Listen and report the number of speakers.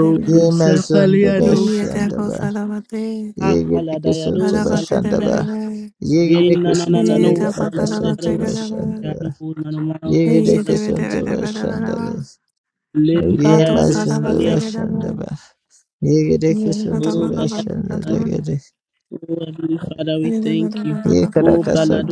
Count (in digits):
3